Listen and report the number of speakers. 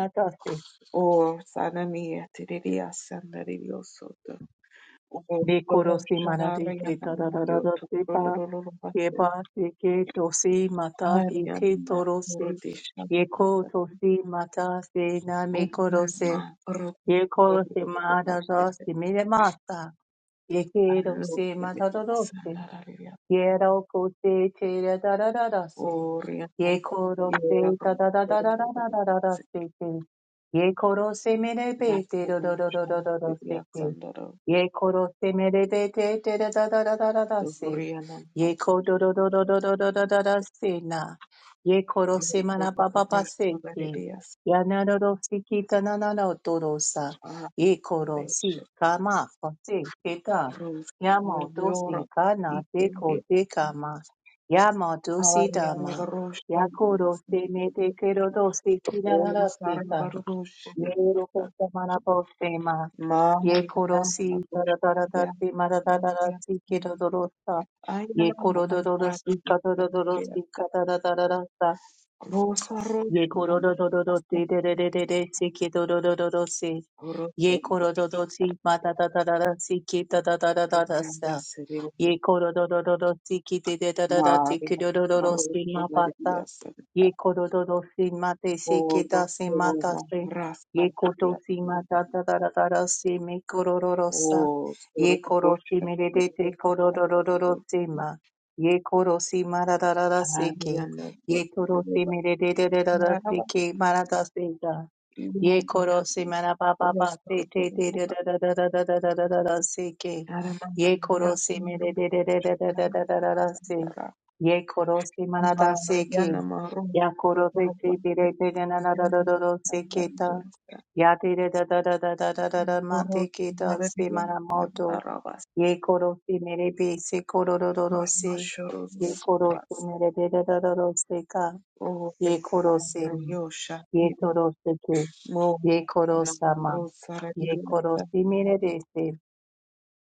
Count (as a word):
two